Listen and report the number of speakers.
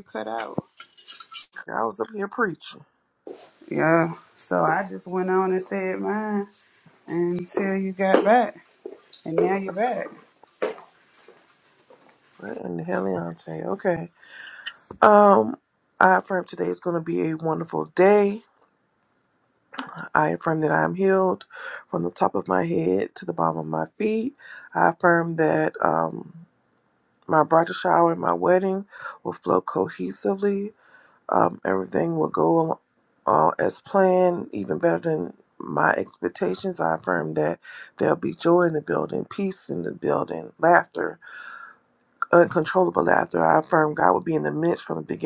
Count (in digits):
2